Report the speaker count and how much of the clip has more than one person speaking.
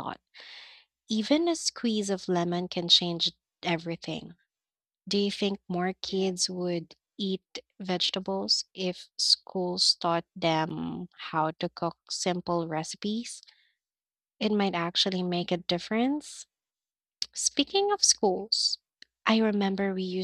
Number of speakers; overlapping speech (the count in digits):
1, no overlap